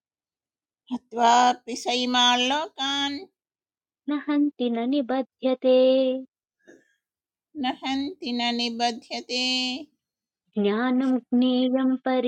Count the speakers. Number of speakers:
2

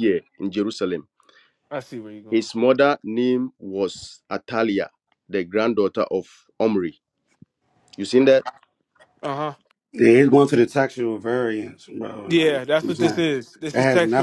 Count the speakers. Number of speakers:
3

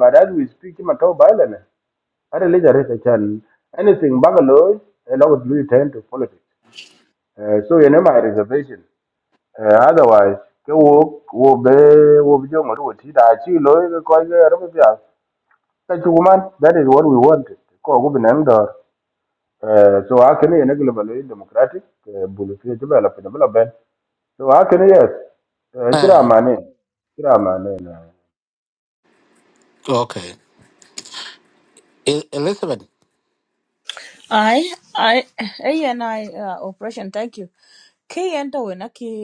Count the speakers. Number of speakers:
3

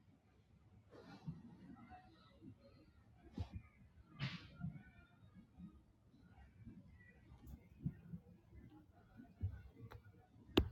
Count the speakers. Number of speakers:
0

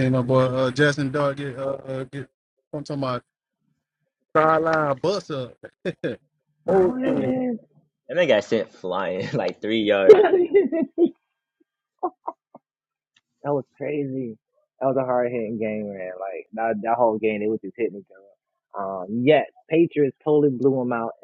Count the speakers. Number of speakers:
3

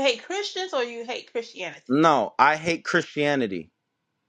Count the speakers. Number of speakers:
2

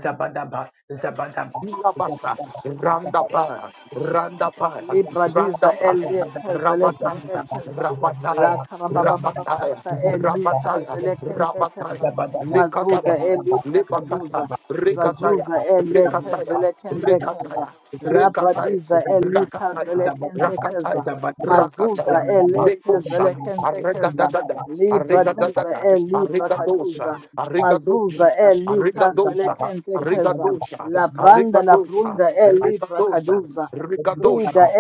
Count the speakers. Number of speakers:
3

